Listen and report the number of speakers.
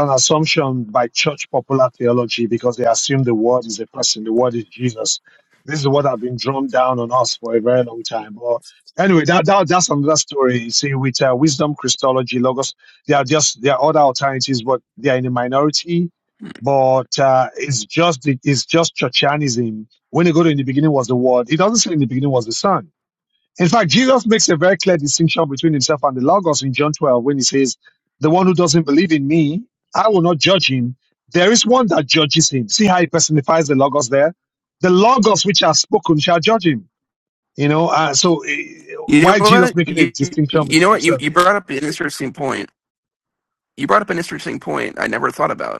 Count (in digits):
2